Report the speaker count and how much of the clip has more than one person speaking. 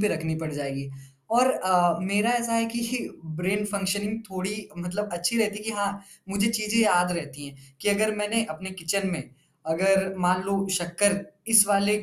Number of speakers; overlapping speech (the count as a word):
one, no overlap